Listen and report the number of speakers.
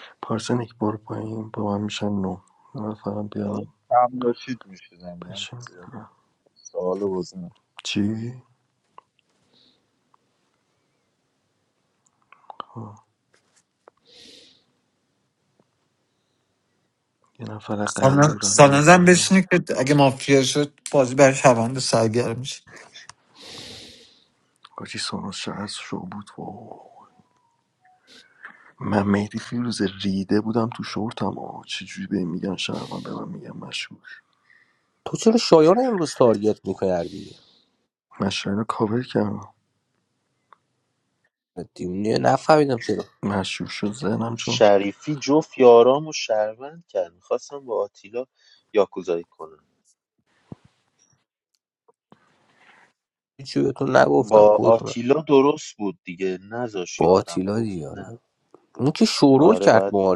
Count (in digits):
5